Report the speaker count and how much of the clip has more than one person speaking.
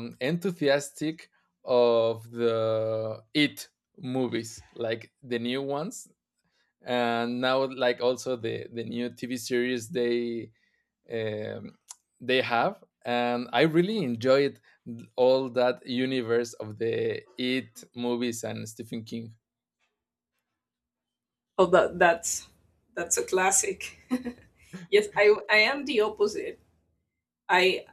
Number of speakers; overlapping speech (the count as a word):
two, no overlap